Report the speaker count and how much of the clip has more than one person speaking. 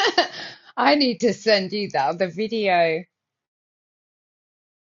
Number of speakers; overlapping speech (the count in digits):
1, no overlap